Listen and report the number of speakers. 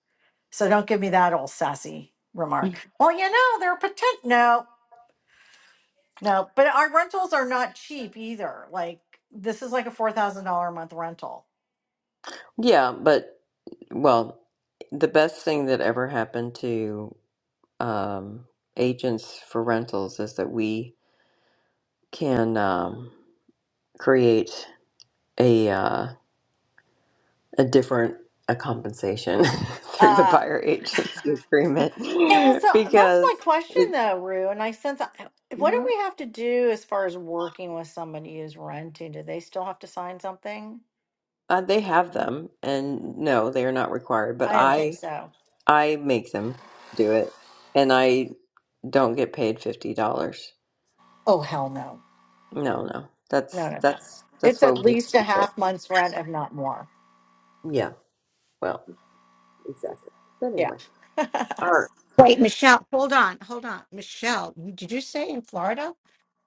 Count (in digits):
3